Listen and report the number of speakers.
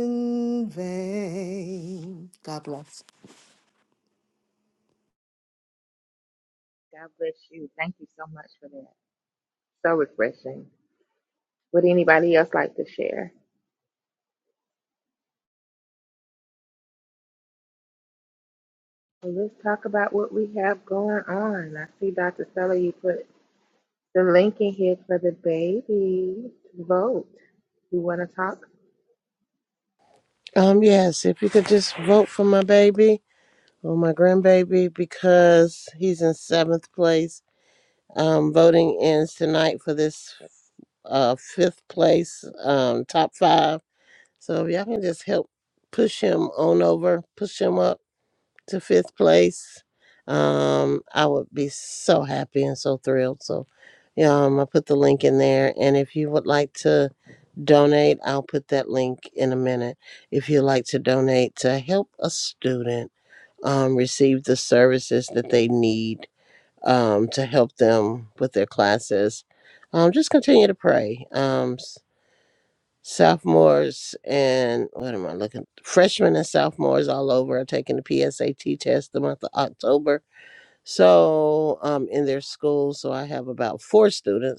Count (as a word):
three